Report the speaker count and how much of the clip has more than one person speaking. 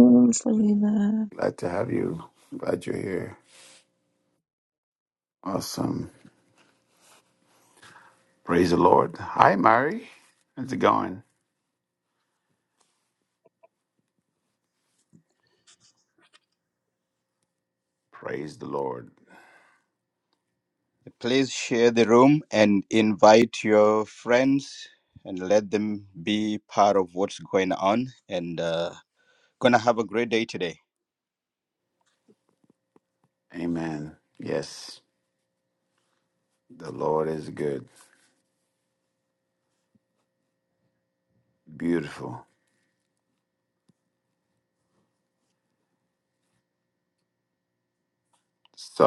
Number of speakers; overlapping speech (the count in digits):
3, no overlap